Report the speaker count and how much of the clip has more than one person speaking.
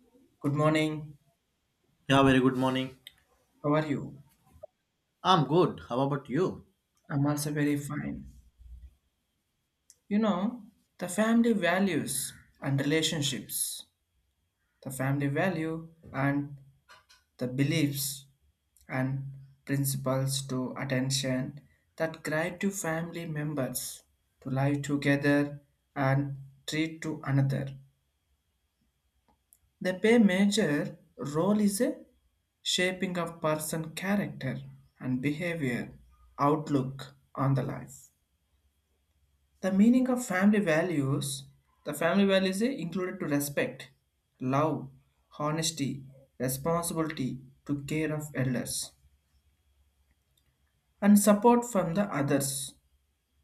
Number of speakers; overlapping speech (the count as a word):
two, no overlap